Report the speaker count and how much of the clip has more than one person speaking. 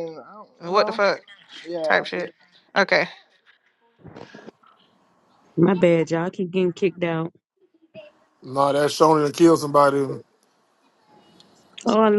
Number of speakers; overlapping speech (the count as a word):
four, about 5%